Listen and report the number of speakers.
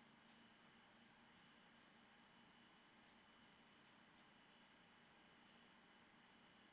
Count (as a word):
zero